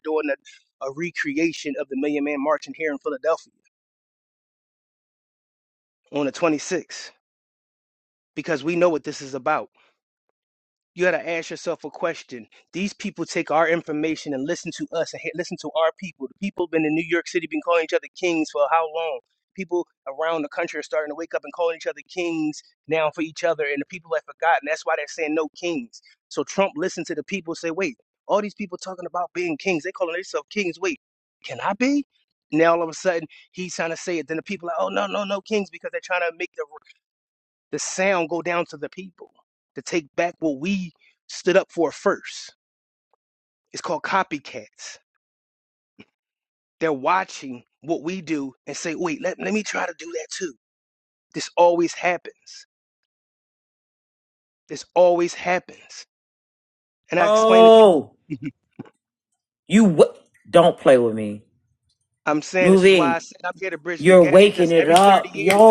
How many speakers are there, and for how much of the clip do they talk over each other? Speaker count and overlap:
2, about 4%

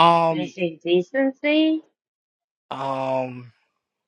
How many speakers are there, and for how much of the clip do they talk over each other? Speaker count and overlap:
2, about 5%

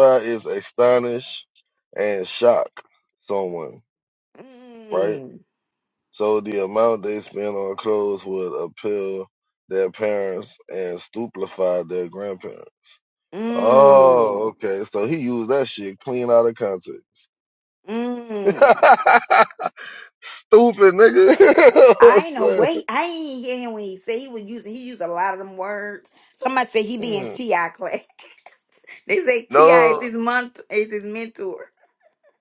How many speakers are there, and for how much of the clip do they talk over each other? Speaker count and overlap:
2, about 8%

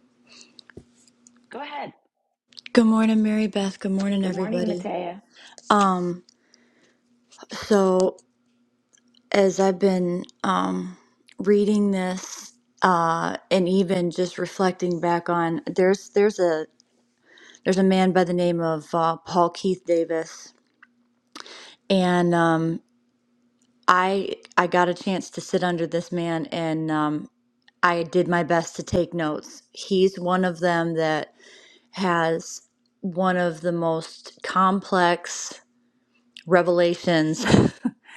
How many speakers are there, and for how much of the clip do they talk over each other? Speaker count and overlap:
2, about 2%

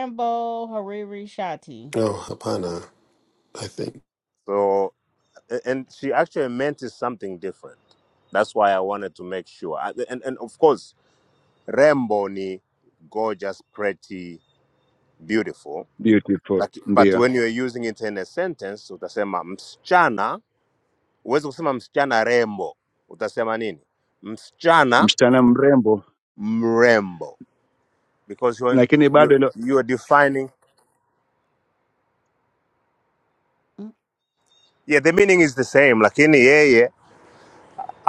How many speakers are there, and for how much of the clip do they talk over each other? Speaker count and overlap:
4, about 3%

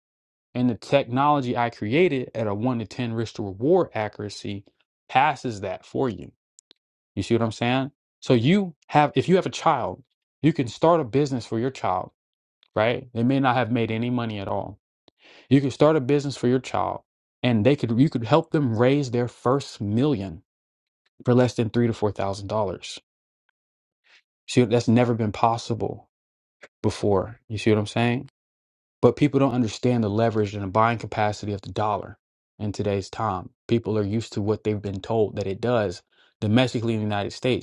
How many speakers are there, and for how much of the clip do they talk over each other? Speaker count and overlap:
1, no overlap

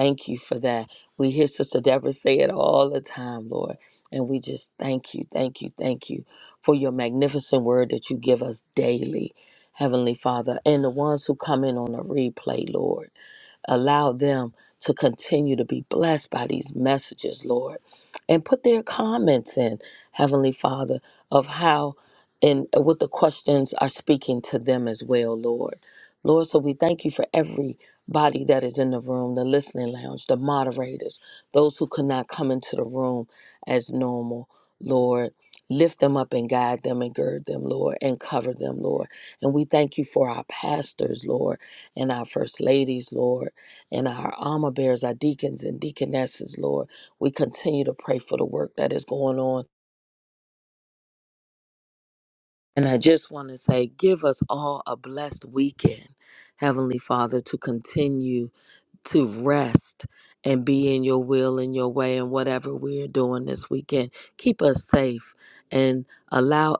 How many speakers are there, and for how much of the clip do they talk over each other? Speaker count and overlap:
1, no overlap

